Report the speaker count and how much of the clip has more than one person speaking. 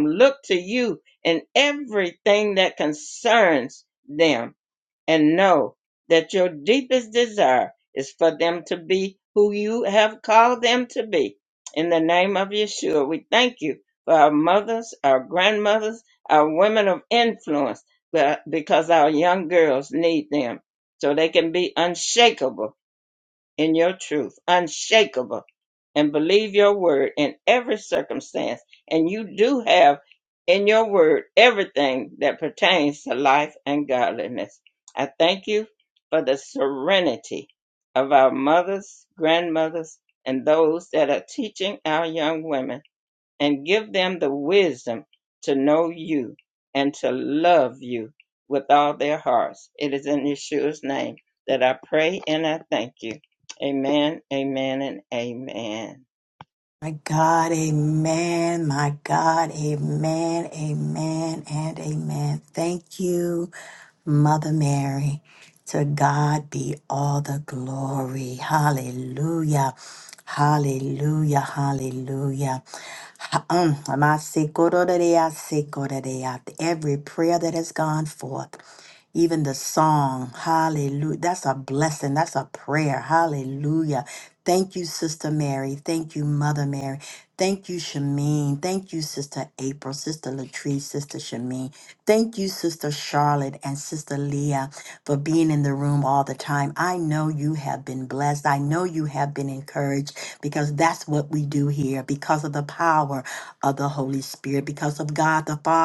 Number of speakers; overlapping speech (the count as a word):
two, no overlap